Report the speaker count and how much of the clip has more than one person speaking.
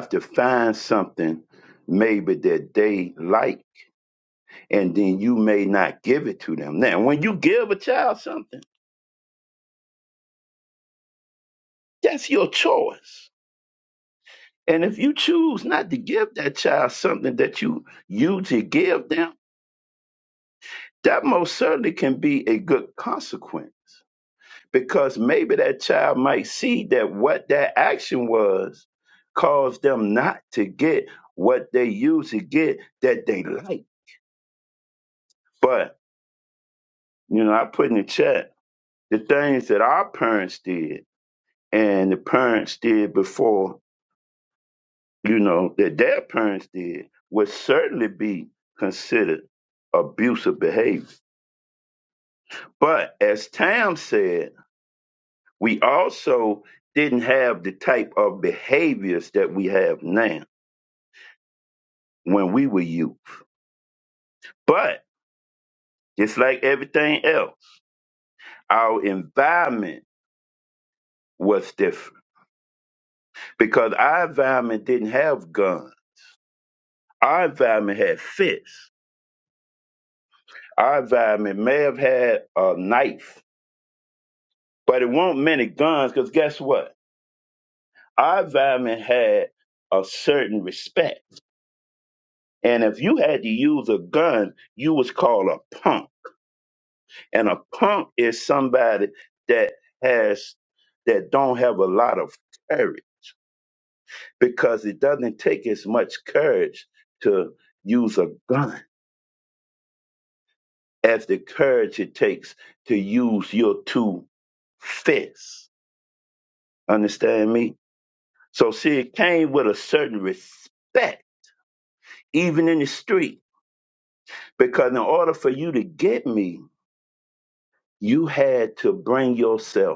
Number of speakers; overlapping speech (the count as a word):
one, no overlap